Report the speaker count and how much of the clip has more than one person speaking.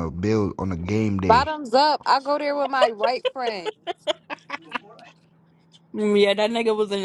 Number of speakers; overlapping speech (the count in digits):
3, about 3%